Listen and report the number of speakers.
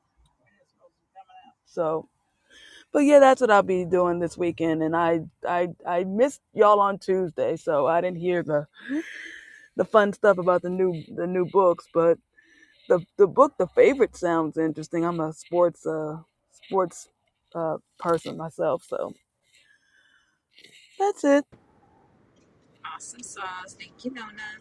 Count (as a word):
two